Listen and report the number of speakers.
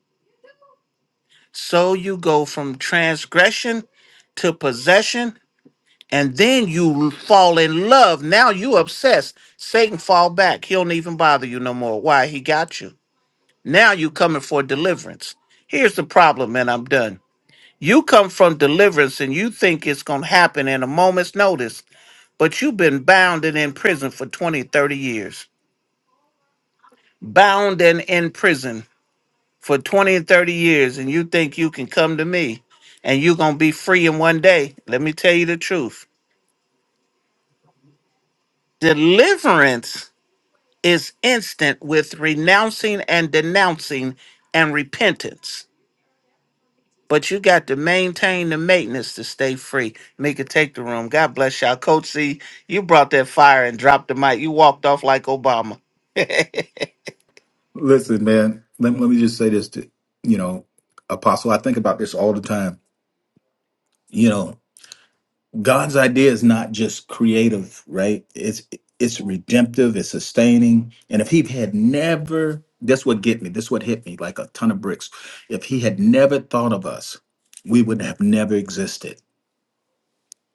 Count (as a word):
two